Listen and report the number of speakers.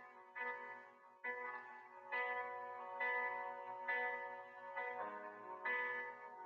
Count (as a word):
zero